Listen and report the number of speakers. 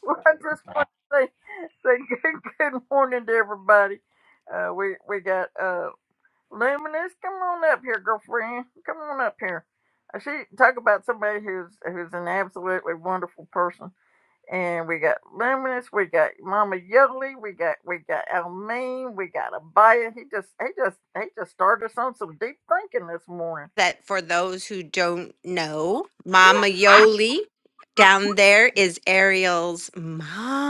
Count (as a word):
two